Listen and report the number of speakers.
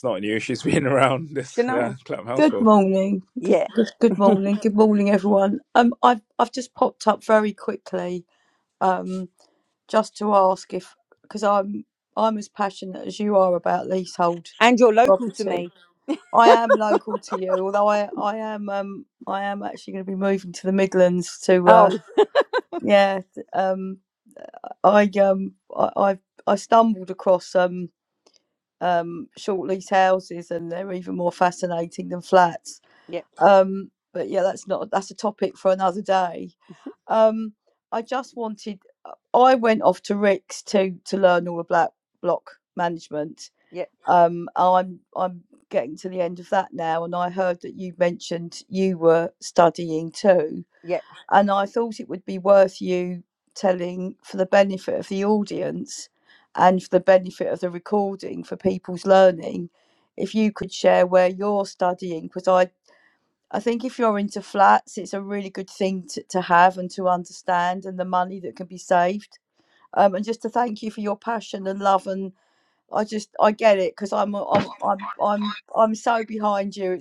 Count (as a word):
three